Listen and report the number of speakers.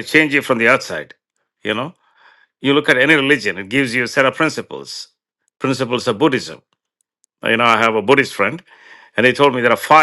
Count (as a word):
one